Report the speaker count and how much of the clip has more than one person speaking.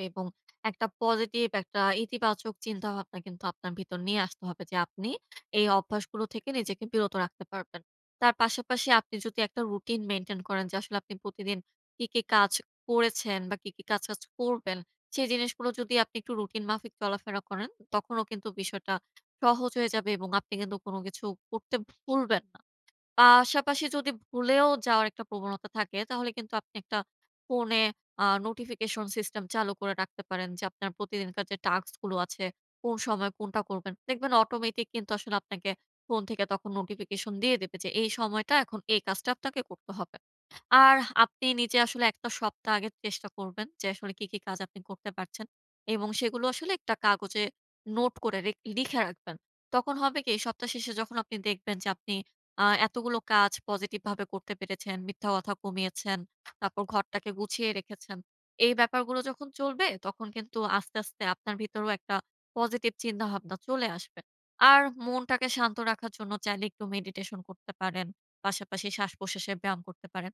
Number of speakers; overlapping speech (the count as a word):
one, no overlap